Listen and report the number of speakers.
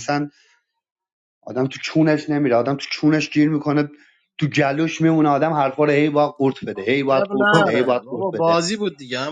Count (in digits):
2